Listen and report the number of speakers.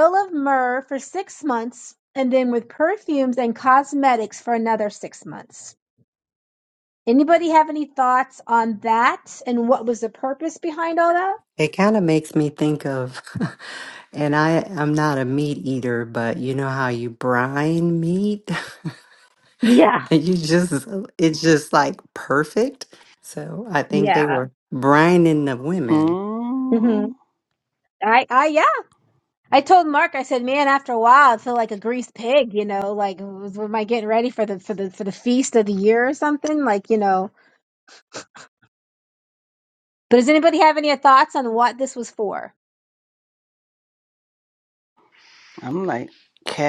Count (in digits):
3